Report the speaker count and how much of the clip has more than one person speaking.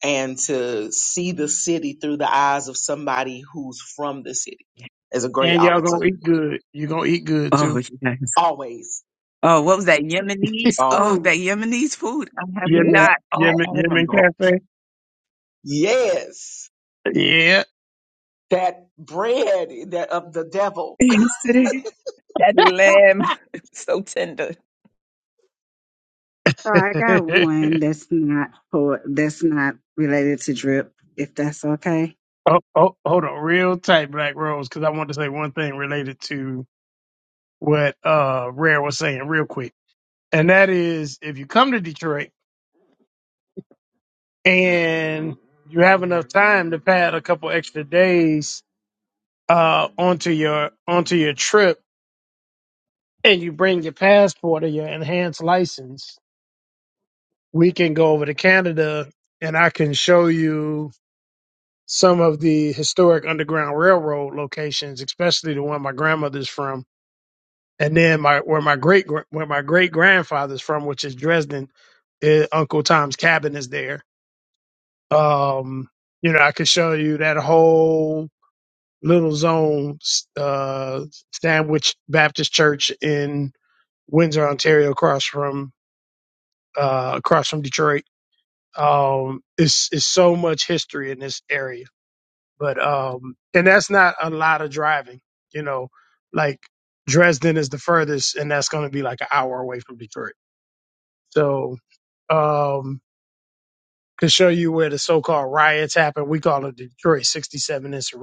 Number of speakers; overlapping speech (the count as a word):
four, about 3%